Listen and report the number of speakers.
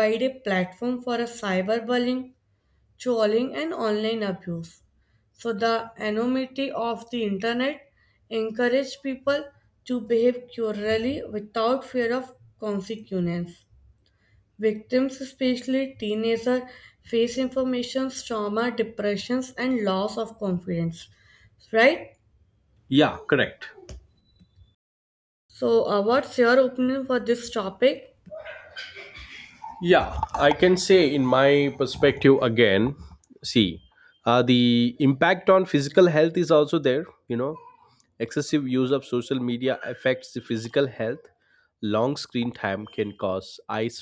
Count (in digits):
2